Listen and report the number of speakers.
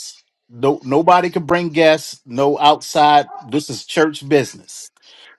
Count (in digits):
1